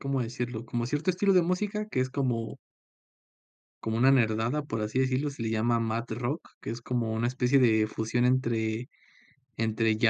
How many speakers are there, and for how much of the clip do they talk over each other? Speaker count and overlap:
1, no overlap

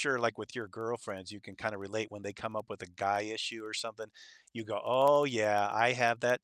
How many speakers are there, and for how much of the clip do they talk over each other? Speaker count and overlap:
1, no overlap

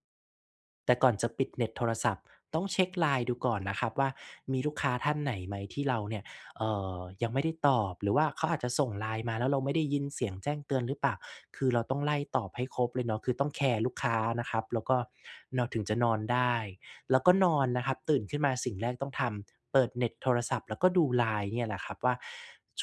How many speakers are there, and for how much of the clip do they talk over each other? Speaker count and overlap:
1, no overlap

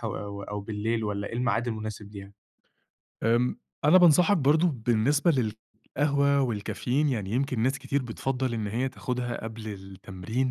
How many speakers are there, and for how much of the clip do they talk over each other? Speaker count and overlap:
2, no overlap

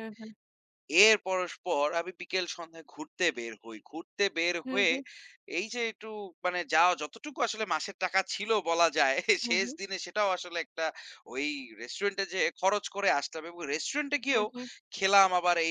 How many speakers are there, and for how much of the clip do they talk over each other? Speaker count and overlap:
2, about 5%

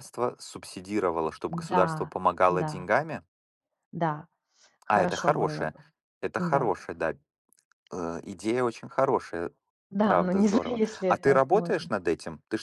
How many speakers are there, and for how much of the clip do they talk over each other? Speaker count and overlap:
2, about 31%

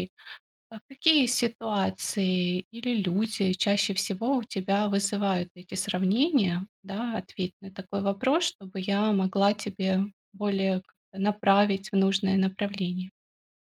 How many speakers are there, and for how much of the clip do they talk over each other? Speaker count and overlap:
1, no overlap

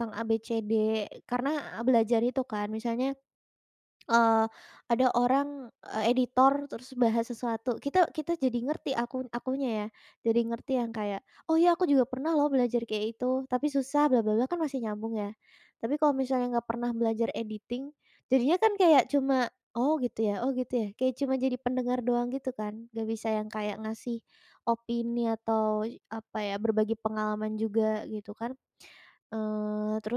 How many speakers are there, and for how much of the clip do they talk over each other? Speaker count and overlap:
1, no overlap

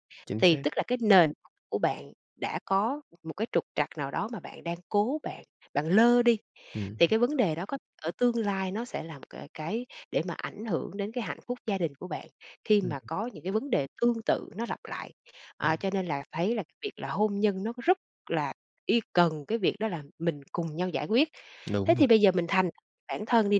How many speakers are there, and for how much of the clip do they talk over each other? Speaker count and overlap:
2, about 3%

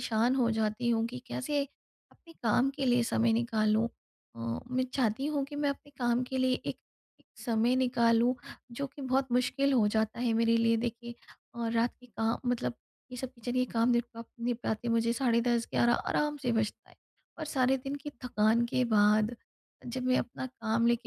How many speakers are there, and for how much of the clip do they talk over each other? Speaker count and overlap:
1, no overlap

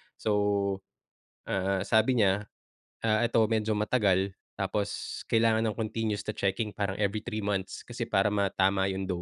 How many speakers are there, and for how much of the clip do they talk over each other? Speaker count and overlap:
1, no overlap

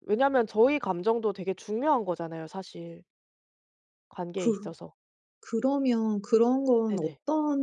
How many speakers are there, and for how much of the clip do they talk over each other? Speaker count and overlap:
2, about 5%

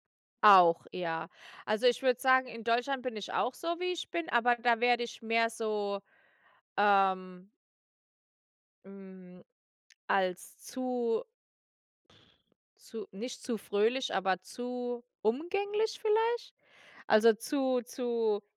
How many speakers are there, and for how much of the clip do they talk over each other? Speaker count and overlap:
1, no overlap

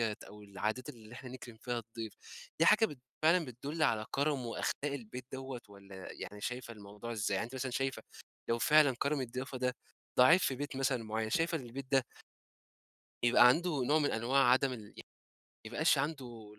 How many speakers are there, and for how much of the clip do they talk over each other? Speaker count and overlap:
1, no overlap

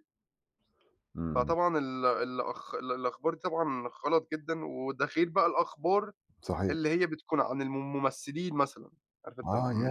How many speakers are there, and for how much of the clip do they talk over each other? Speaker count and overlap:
2, about 7%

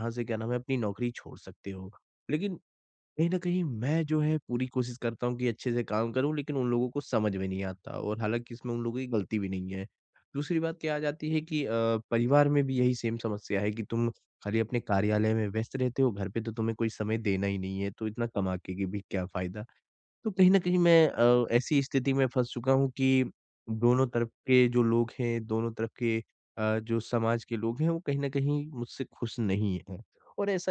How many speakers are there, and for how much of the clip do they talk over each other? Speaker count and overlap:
1, no overlap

